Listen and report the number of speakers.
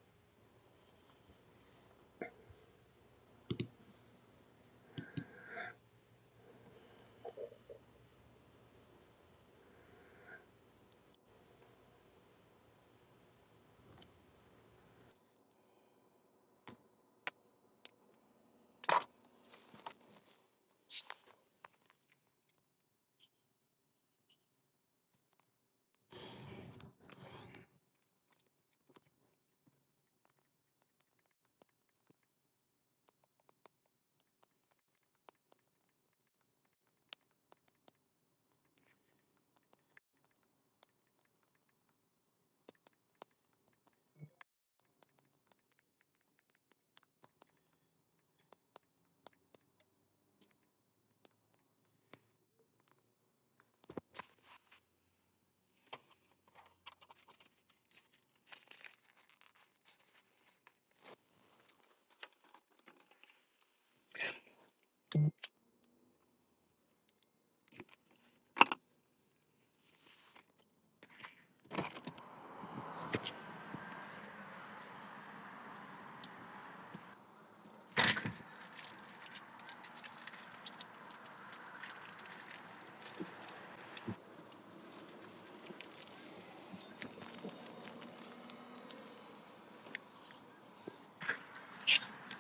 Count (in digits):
0